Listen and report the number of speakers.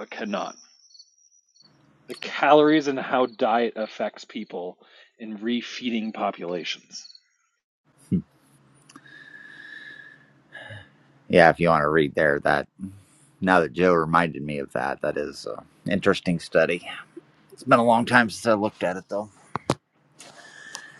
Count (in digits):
2